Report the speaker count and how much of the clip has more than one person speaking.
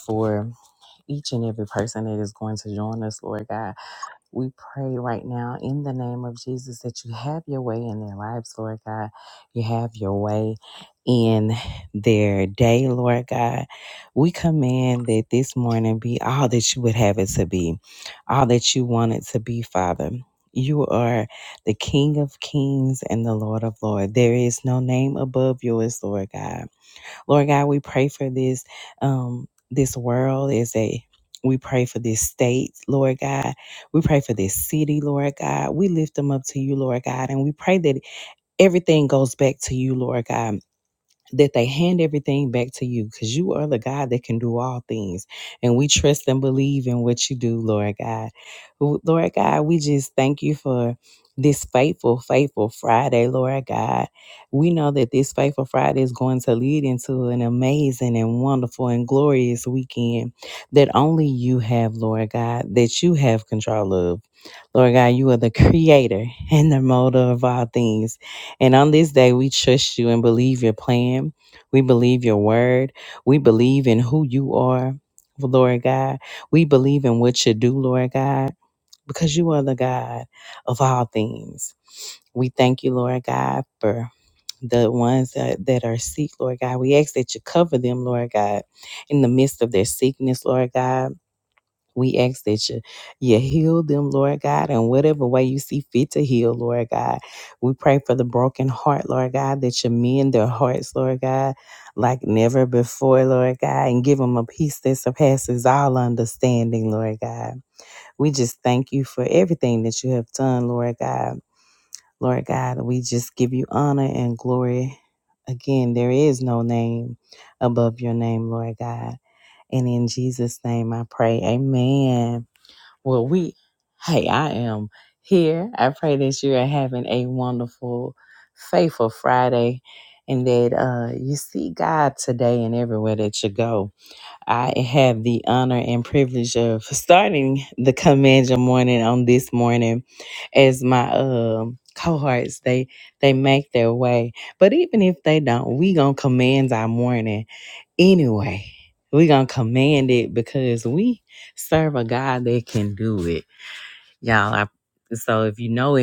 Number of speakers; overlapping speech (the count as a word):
one, no overlap